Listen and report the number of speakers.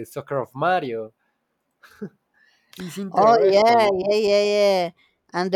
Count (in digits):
2